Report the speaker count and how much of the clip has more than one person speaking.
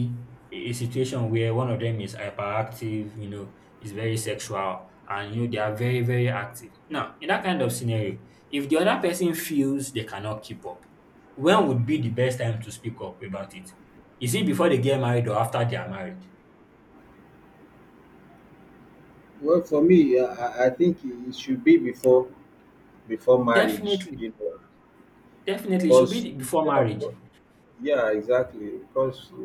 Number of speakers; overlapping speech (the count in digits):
2, about 6%